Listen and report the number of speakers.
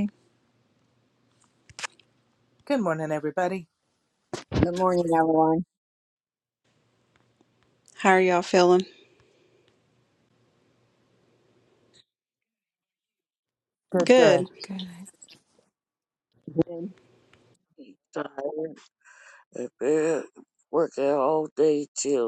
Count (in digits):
4